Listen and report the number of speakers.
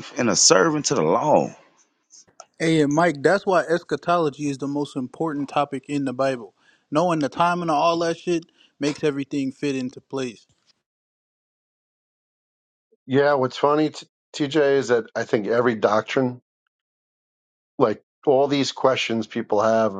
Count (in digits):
3